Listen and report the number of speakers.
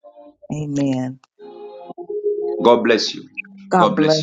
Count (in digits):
2